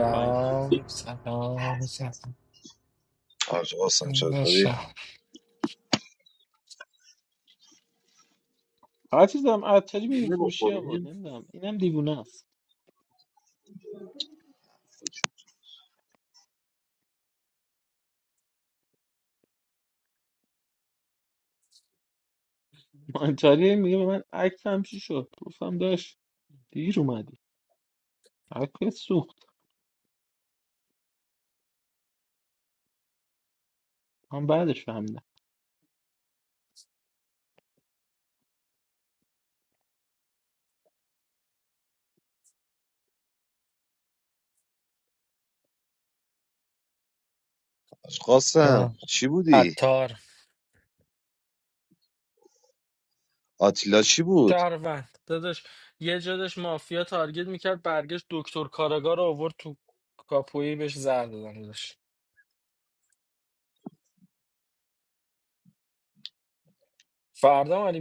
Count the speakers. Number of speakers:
3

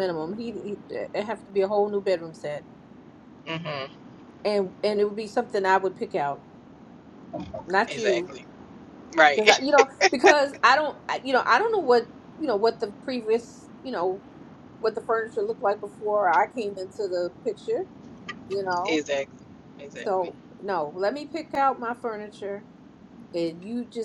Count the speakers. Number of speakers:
2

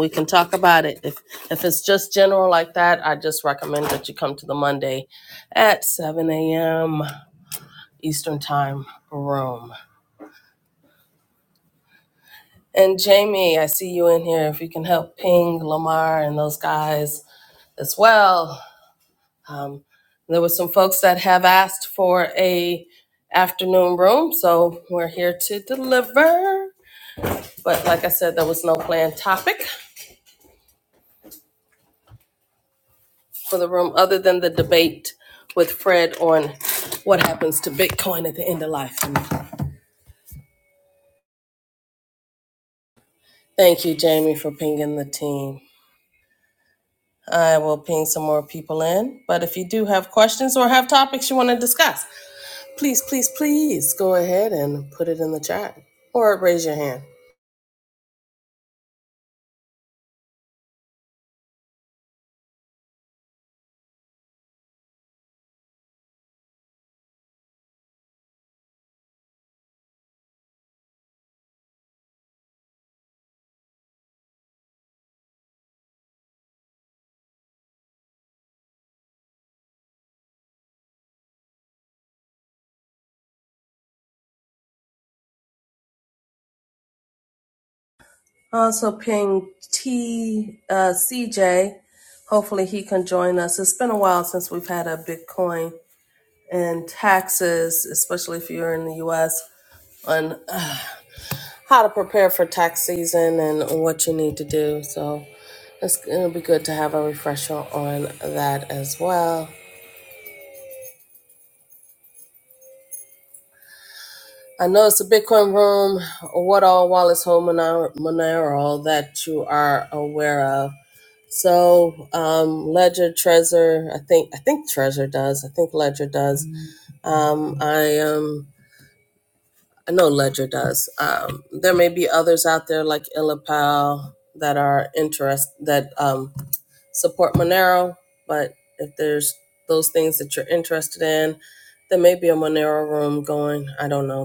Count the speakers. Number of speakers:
1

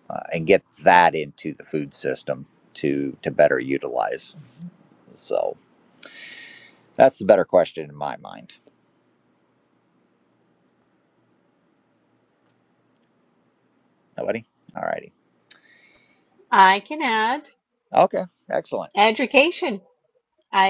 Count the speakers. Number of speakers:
2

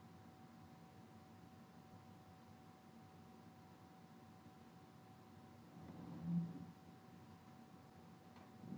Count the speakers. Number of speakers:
0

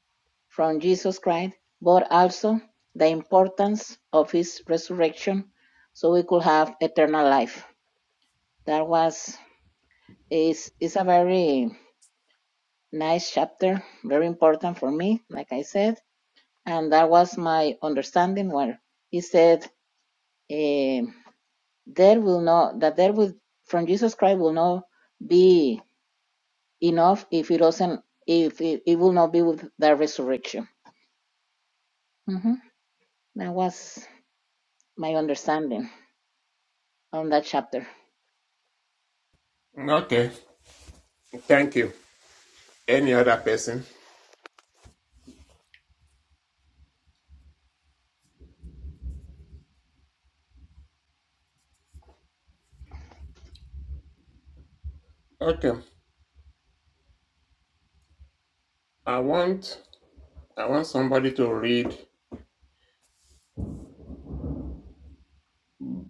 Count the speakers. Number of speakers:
2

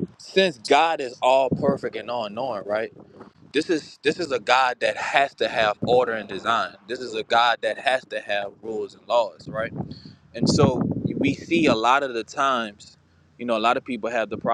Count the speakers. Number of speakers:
1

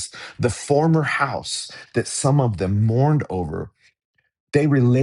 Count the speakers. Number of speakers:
1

